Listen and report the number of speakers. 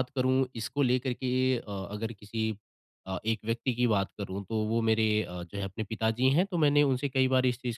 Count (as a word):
one